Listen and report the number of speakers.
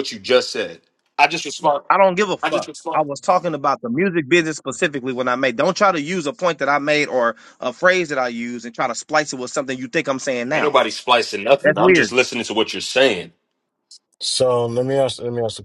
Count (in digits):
3